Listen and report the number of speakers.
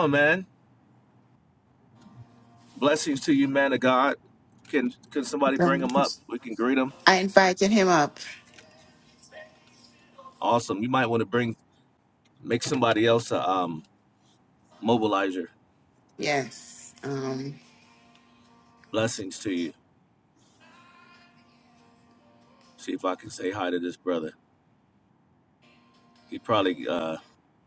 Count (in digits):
2